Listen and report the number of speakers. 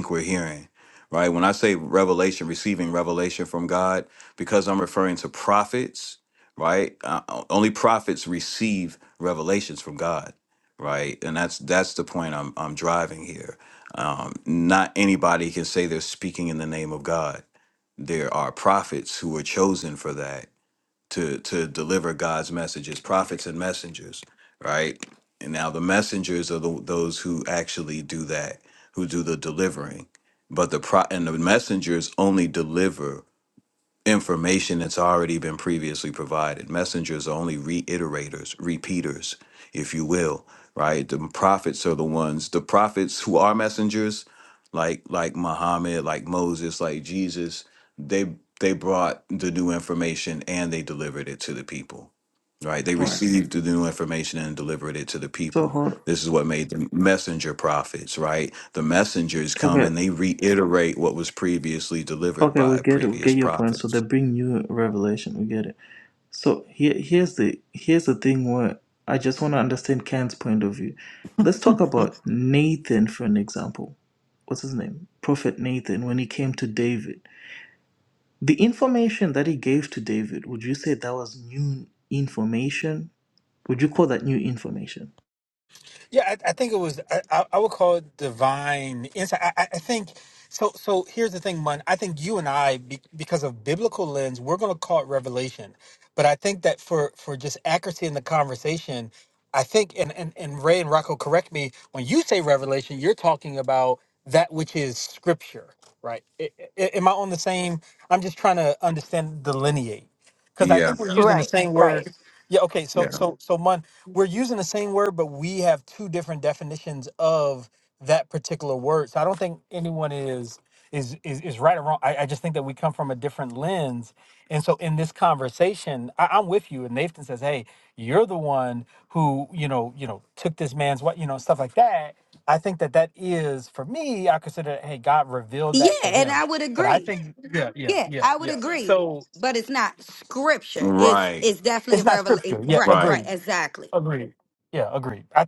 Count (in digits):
4